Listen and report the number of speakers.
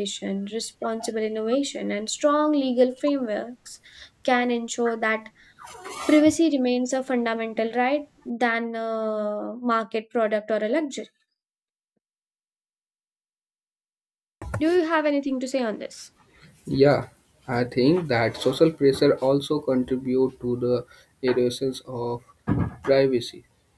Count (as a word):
two